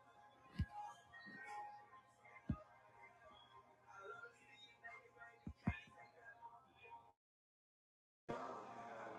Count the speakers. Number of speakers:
0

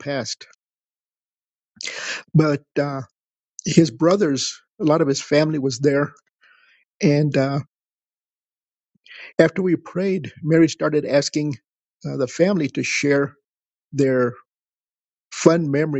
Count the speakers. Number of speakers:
1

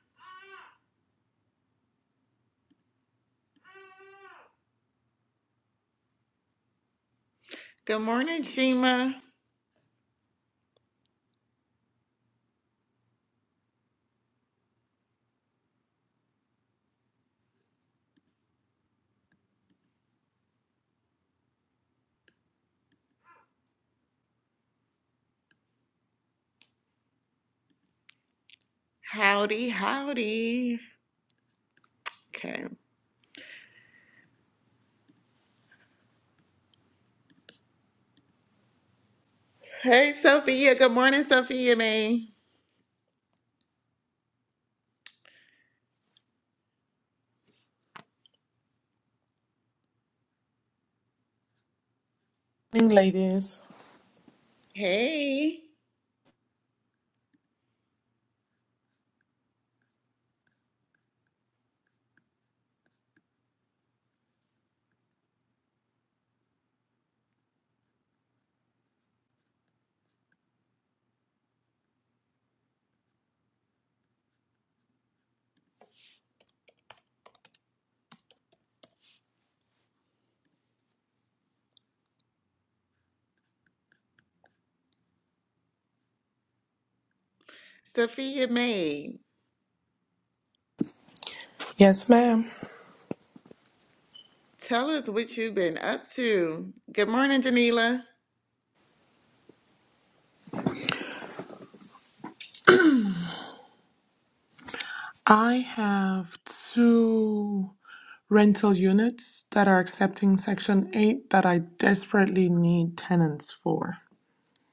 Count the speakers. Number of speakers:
2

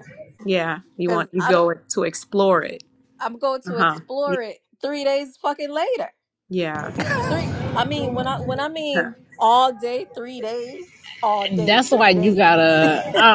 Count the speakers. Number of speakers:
3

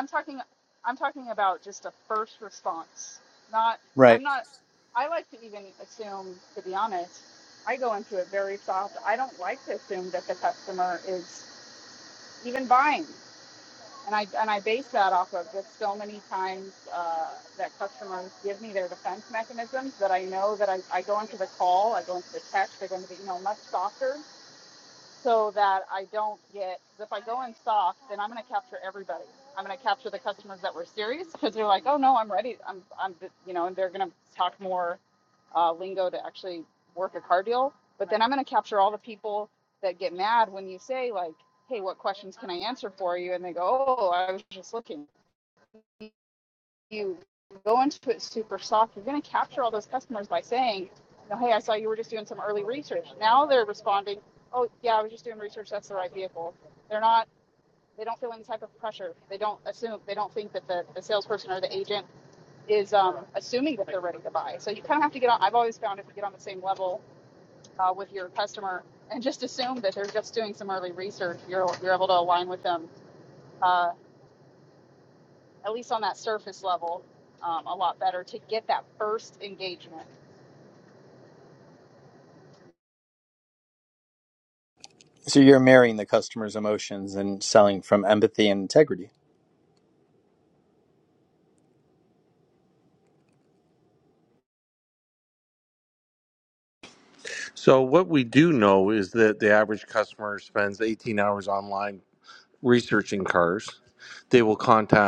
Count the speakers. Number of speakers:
3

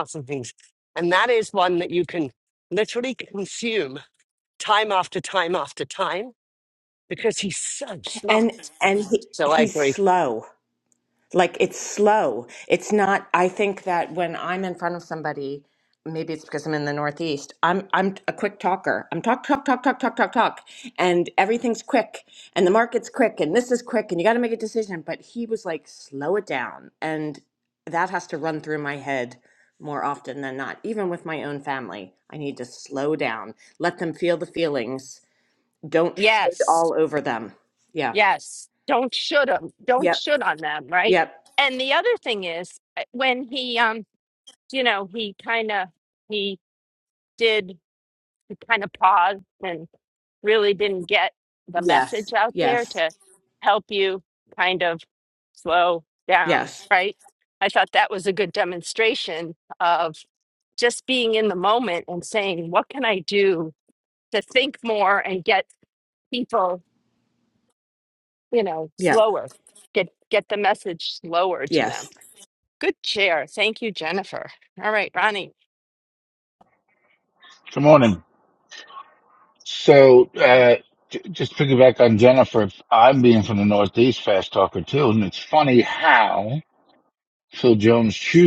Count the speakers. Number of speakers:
4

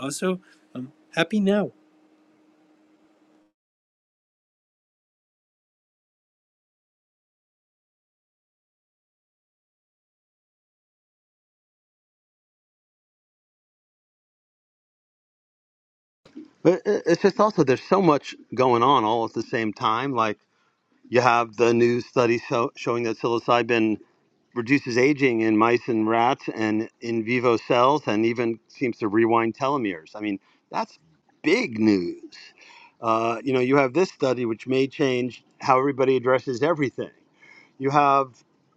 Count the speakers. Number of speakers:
2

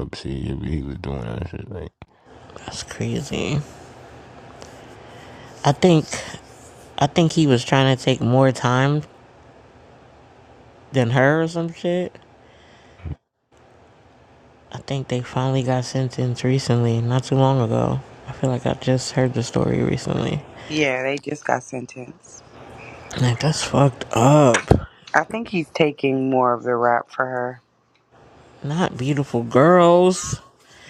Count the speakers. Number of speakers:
3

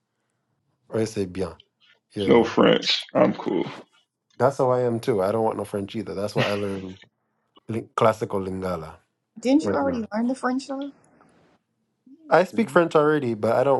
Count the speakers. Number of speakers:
3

